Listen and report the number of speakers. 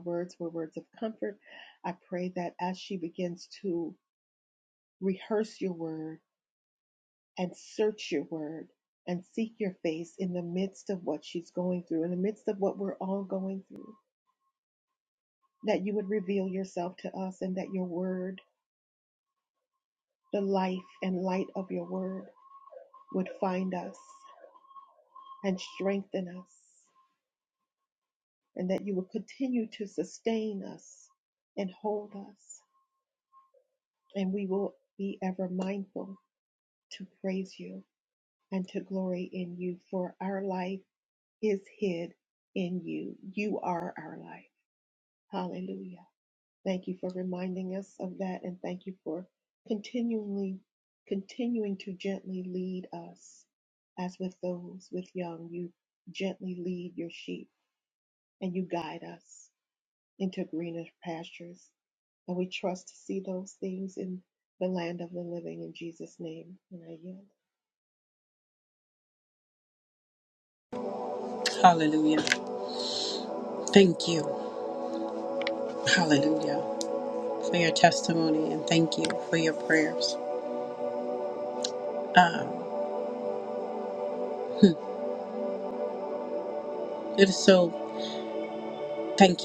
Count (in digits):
2